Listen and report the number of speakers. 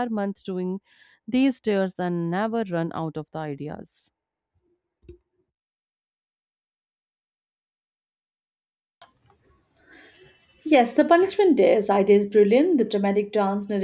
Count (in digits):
2